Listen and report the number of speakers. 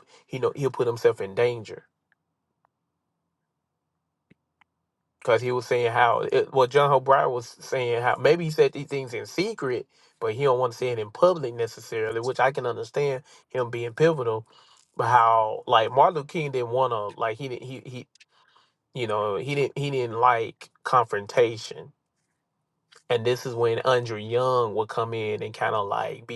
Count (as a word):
one